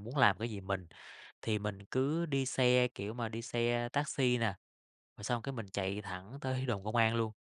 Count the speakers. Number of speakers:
one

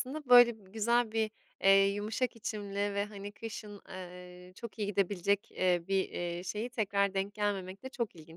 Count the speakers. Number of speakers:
one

